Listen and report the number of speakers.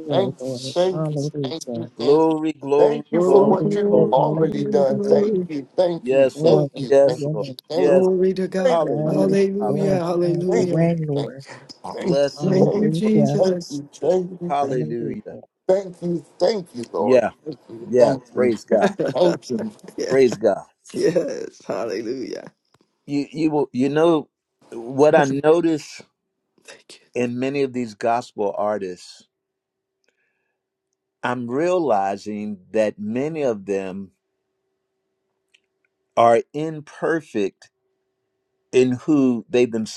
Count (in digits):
4